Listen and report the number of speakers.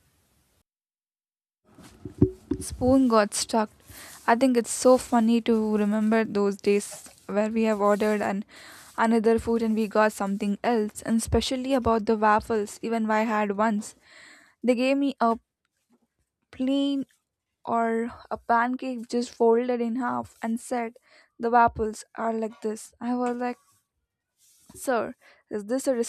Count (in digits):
1